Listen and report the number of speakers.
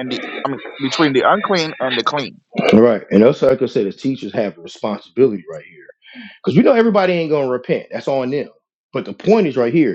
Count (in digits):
2